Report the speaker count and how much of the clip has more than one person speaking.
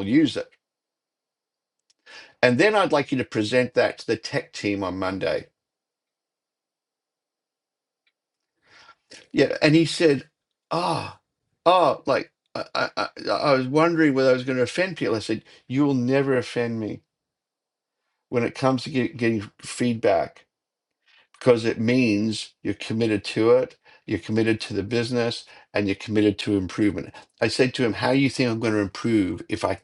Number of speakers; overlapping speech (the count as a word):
one, no overlap